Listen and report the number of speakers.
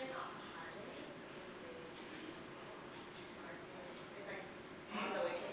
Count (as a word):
one